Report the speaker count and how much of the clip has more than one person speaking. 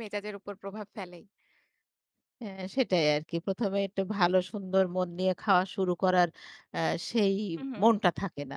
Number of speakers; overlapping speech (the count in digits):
2, about 1%